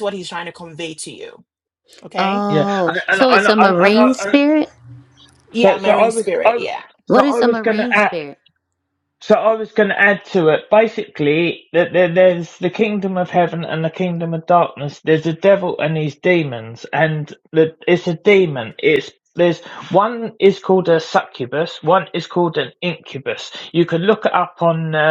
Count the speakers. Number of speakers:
three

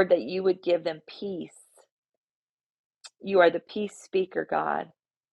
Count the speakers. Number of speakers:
one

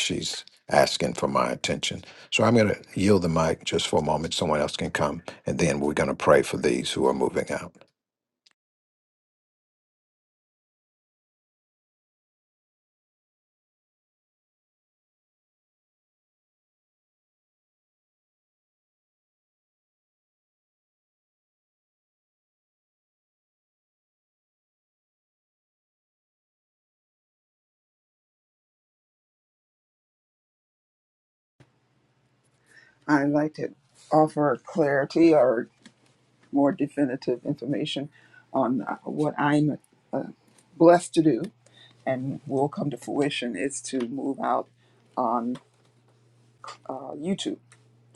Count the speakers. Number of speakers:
two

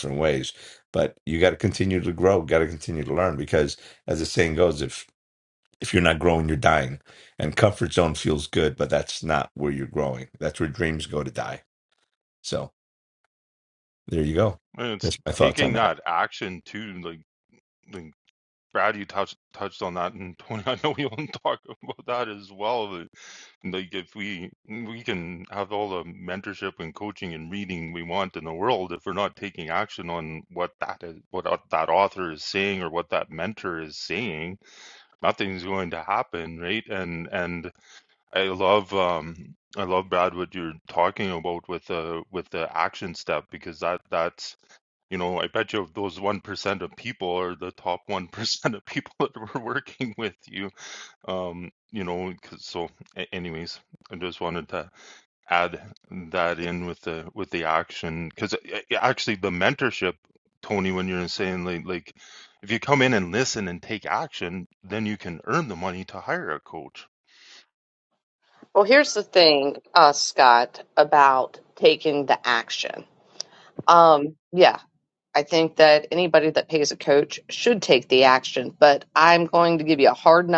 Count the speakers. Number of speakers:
three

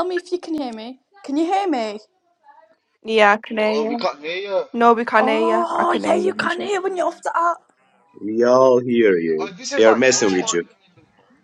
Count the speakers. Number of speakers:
four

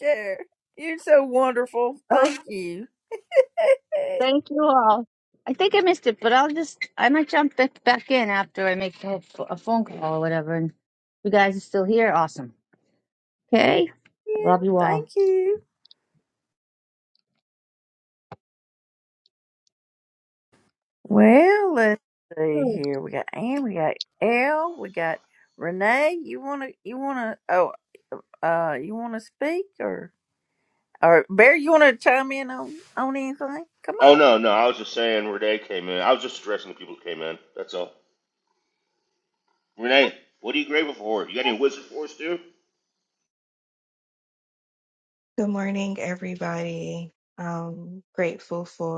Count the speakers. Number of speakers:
four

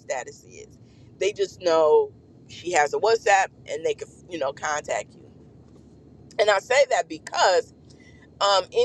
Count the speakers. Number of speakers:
one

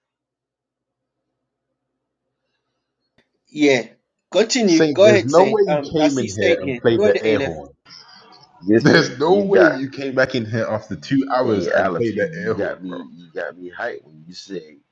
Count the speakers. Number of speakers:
three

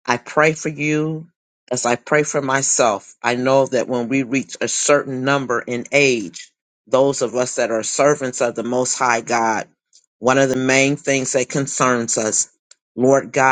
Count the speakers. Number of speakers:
one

